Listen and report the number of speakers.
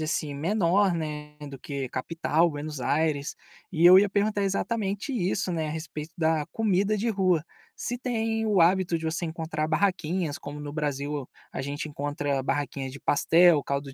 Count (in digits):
1